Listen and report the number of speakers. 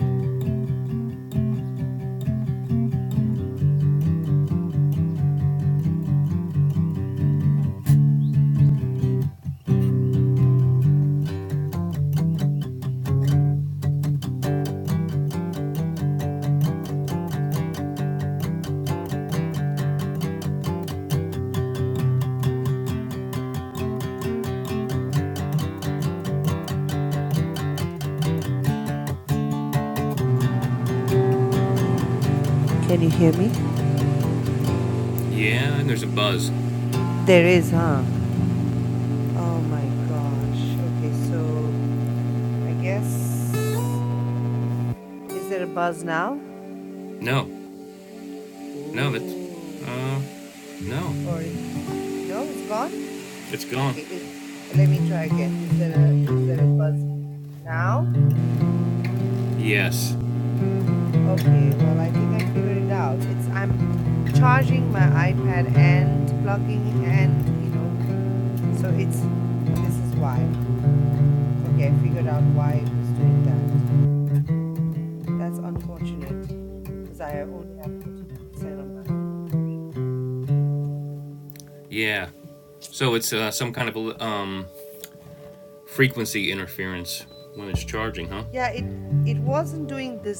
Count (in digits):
2